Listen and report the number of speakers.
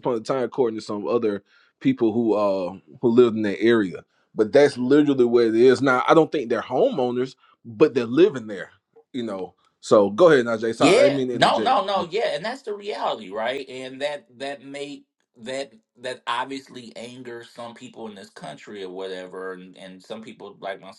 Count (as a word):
two